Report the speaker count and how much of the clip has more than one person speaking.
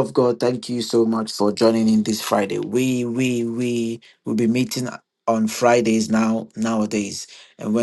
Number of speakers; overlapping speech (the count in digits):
1, no overlap